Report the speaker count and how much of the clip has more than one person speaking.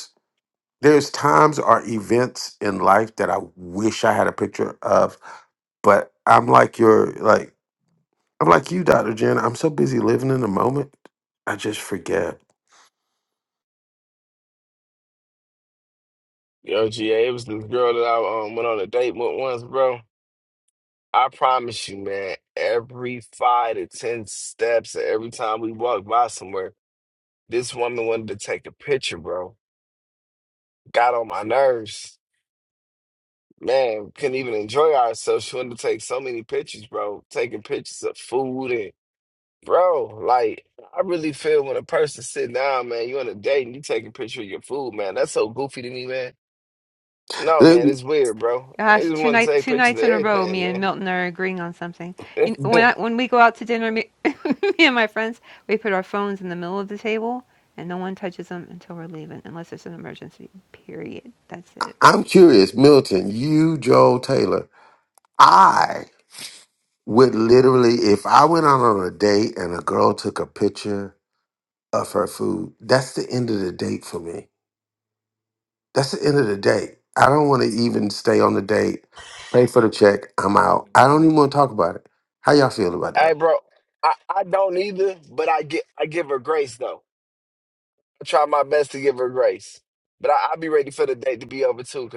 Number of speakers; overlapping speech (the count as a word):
three, about 3%